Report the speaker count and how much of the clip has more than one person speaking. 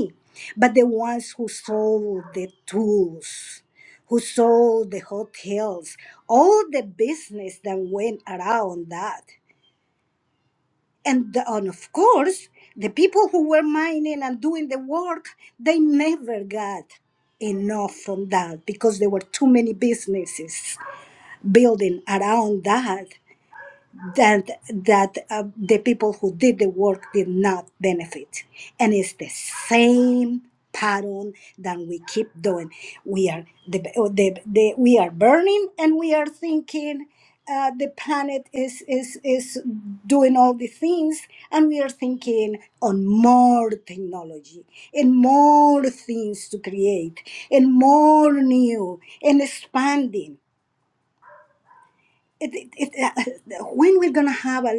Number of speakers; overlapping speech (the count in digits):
1, no overlap